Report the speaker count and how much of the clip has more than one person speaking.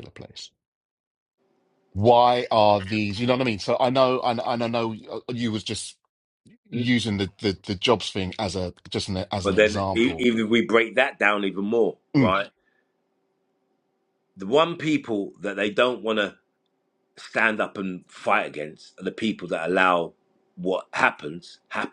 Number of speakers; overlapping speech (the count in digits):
2, about 4%